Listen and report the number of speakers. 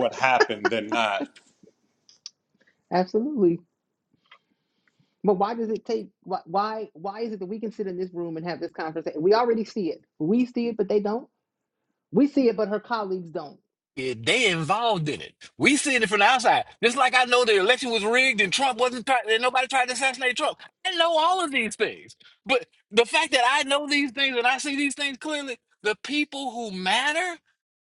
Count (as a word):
three